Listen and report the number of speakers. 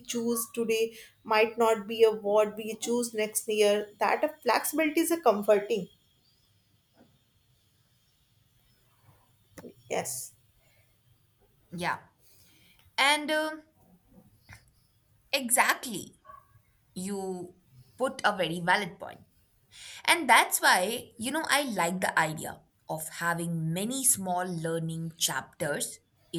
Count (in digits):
2